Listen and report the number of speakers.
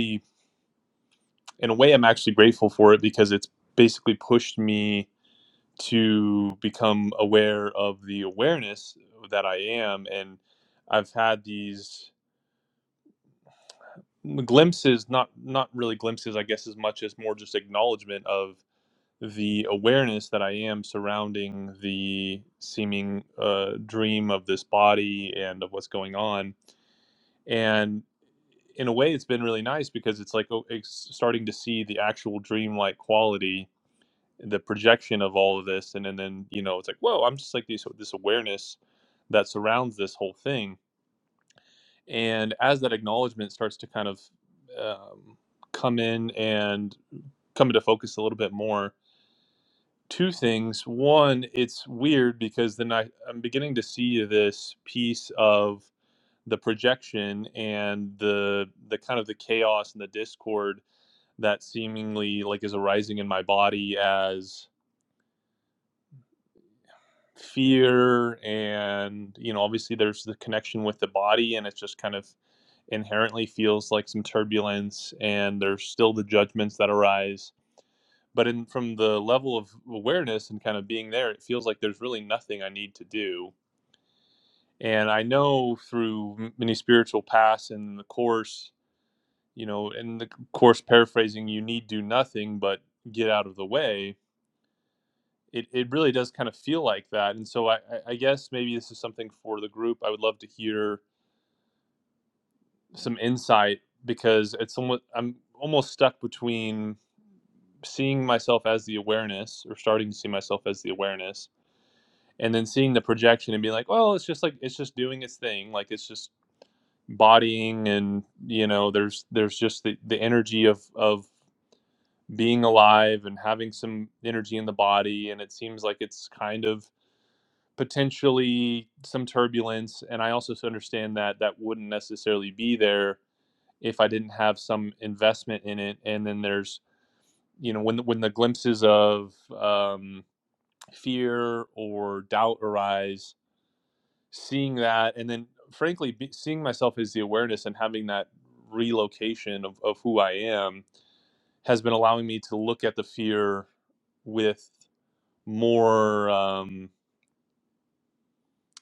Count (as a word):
one